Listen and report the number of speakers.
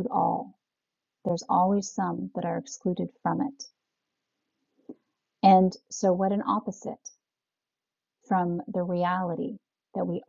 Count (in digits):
1